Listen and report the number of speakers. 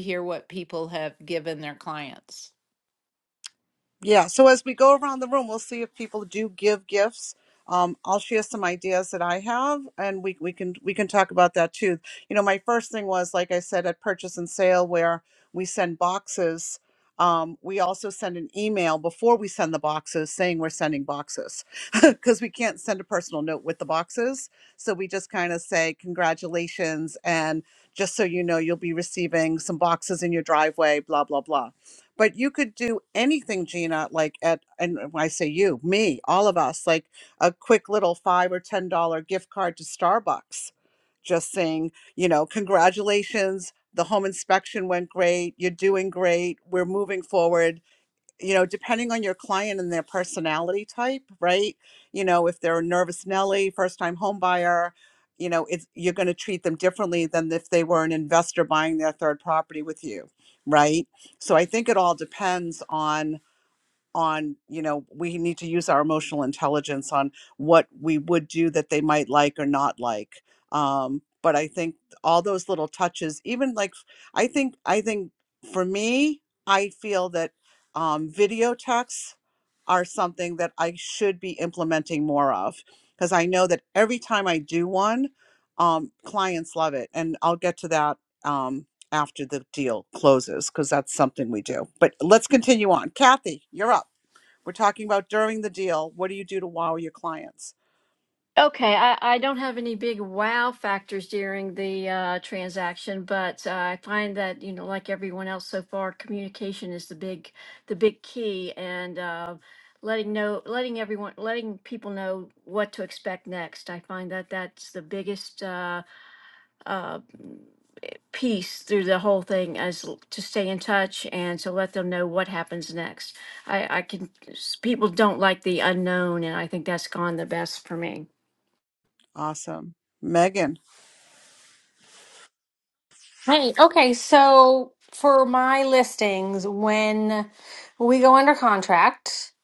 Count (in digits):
4